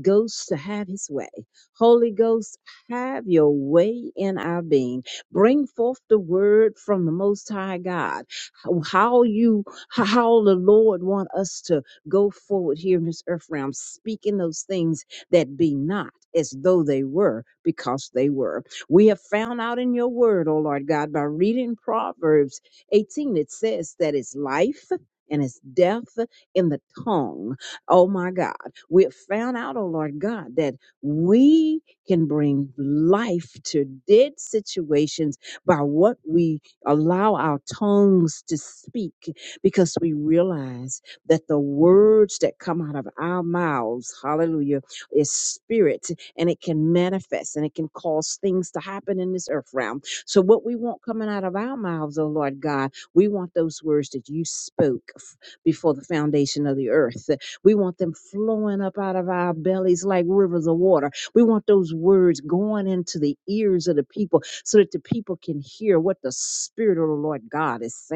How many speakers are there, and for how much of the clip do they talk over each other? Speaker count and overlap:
1, no overlap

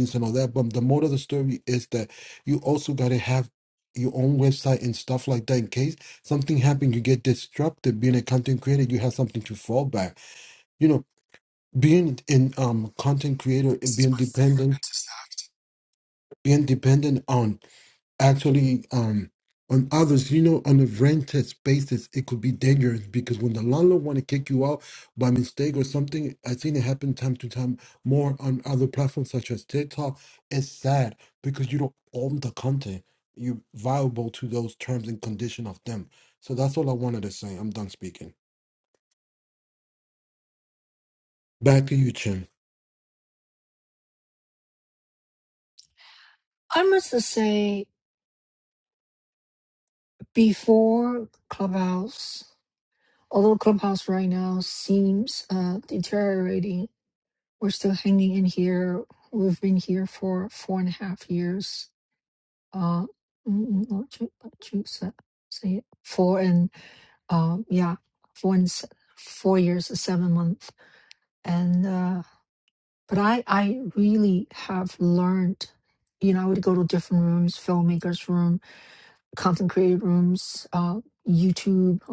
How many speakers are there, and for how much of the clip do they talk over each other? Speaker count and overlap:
2, no overlap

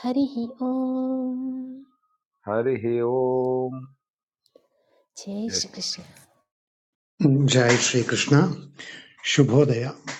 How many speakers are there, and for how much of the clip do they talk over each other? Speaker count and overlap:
3, about 1%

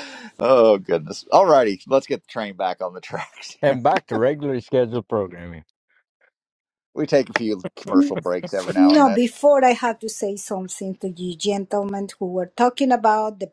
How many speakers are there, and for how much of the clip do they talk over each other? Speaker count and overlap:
3, about 3%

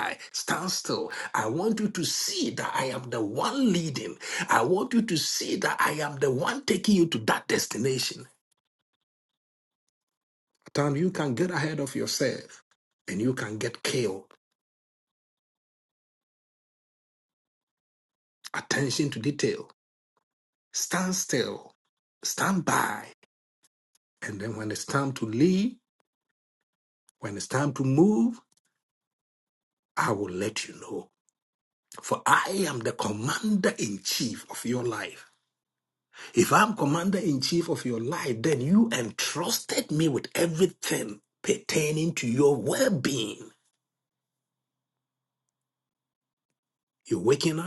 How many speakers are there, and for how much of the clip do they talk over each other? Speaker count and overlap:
1, no overlap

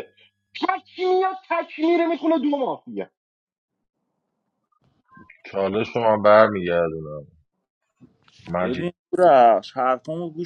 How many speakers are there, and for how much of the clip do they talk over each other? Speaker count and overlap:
3, about 2%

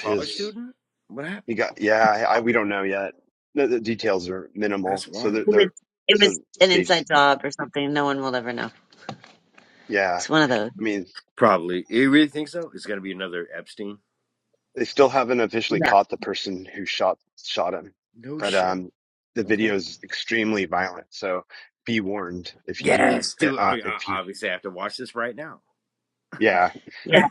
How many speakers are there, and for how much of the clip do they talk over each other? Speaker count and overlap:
3, about 16%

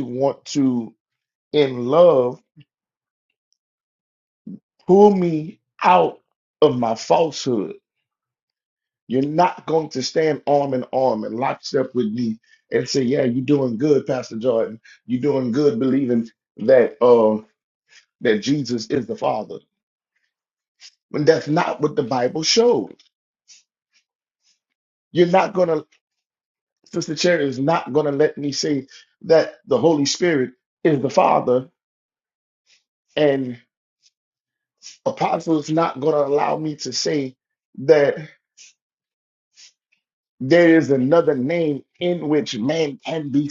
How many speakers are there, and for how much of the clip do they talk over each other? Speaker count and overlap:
1, no overlap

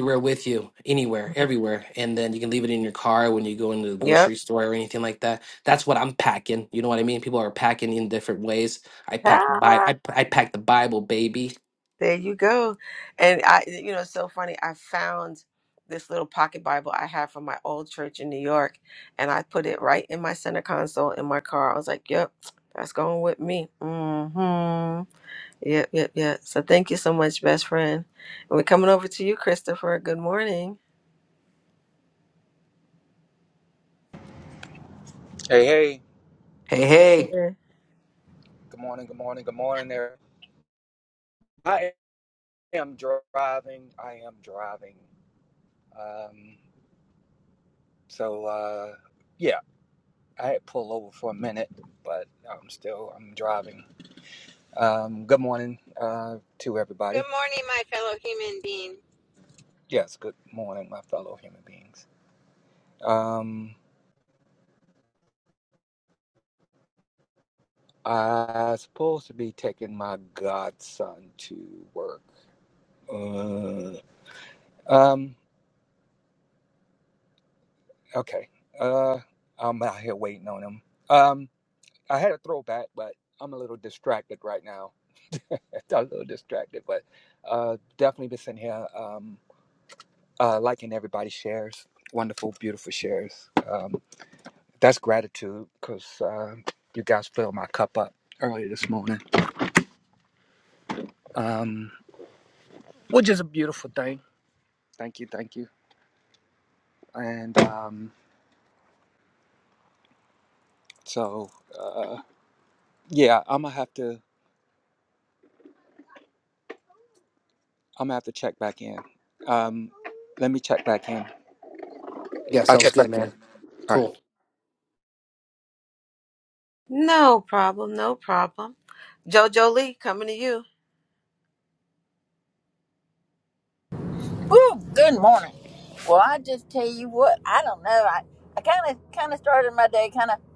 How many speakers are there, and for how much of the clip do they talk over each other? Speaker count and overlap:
5, under 1%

